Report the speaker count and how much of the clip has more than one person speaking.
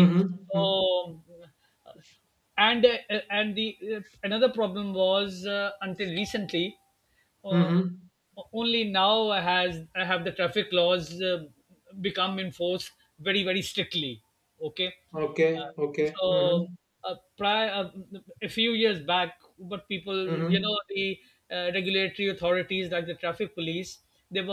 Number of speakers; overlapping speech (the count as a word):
two, about 6%